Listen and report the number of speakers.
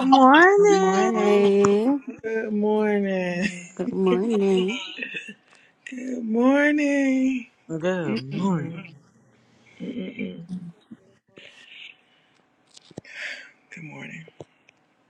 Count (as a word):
three